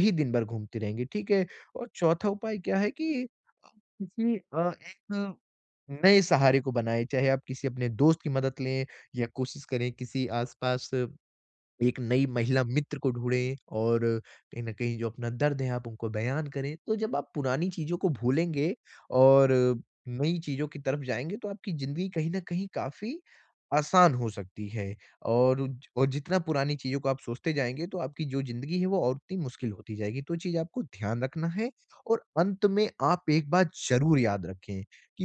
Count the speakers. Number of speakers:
1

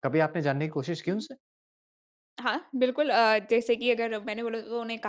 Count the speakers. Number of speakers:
2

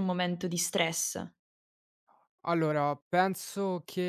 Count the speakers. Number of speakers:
2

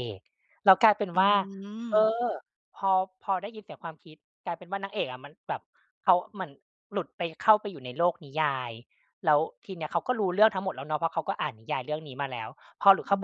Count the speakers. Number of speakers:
2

